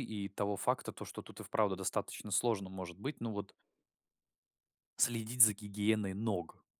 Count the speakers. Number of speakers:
one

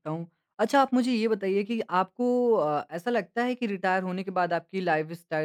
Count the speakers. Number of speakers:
one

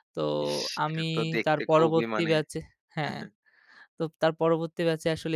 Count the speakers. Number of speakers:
two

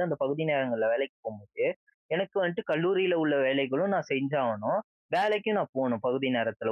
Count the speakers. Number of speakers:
one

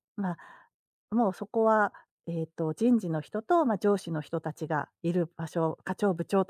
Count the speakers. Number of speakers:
one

